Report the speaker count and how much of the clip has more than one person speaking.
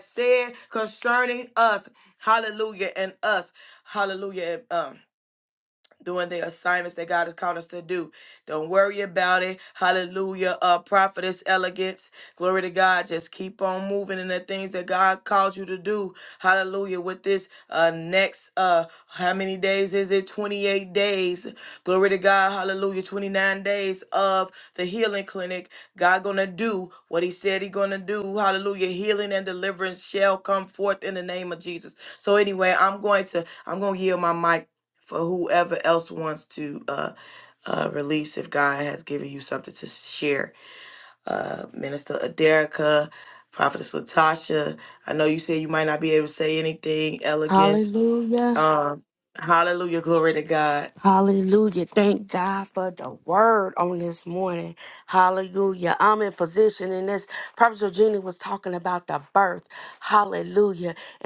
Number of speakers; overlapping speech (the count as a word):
two, about 1%